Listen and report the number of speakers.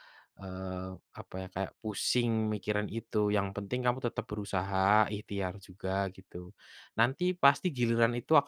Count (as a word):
one